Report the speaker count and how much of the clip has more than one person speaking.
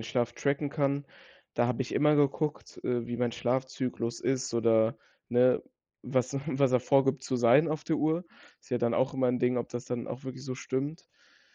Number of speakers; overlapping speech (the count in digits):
1, no overlap